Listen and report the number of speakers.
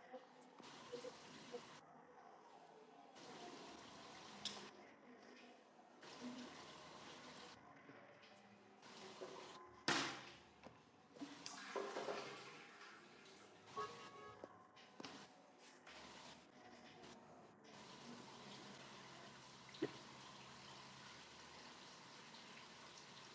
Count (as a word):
zero